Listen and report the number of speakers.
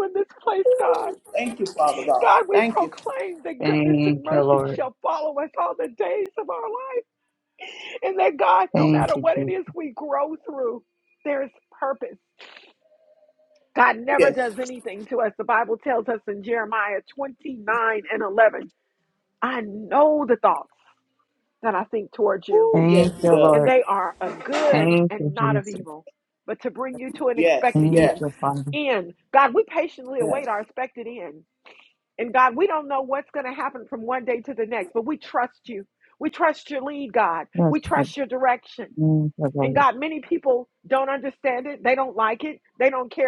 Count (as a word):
three